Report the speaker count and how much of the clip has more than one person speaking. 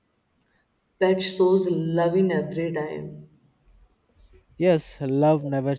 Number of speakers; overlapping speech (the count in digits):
2, no overlap